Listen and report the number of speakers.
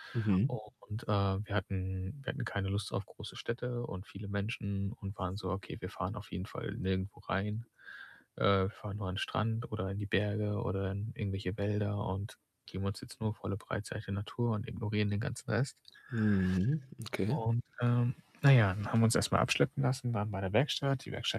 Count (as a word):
two